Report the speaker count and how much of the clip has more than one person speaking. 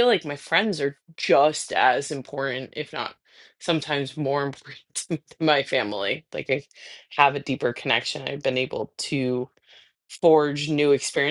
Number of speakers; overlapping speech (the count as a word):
one, no overlap